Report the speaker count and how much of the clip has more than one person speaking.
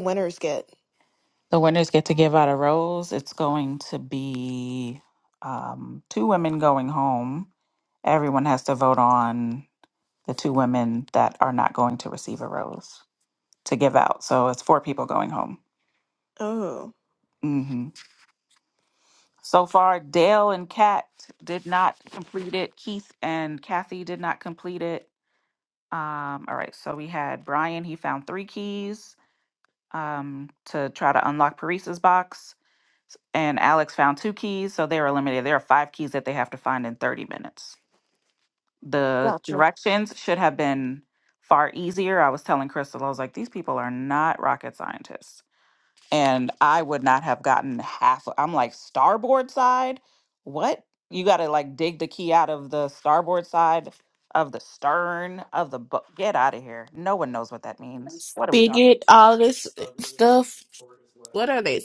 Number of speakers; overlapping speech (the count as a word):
three, about 2%